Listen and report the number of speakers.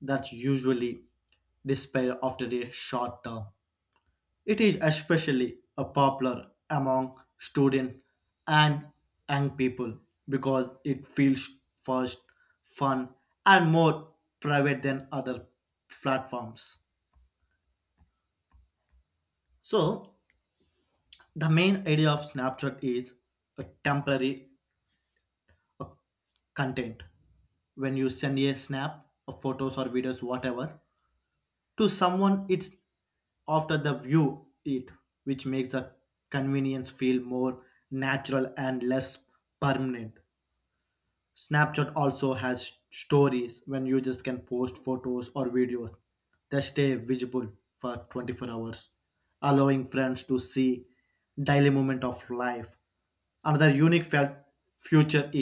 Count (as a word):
one